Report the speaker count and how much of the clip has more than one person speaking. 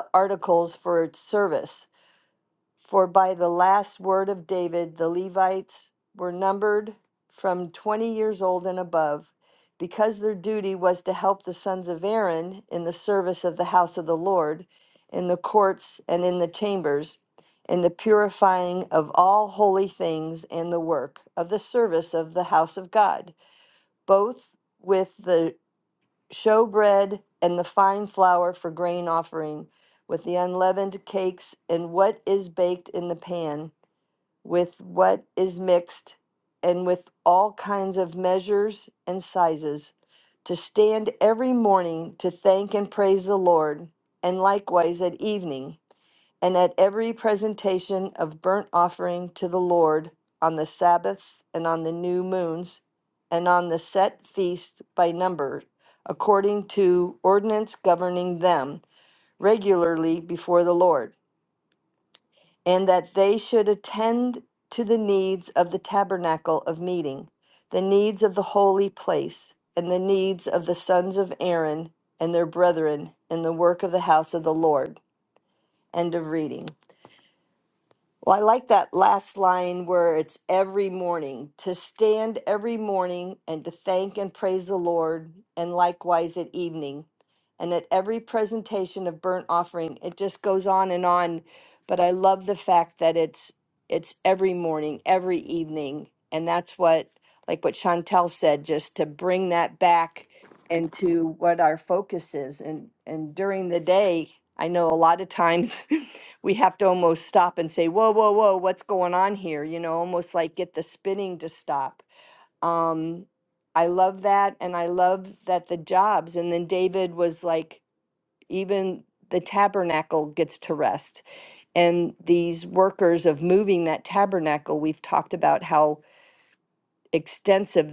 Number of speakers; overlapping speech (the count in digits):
1, no overlap